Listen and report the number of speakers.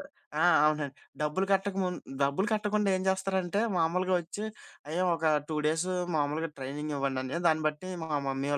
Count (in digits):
1